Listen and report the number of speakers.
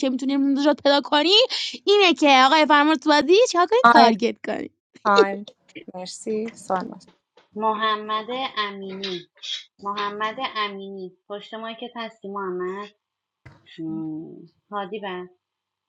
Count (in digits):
3